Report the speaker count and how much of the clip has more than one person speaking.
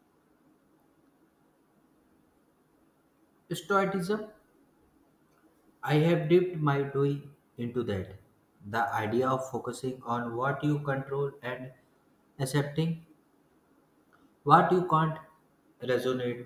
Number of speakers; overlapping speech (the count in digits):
1, no overlap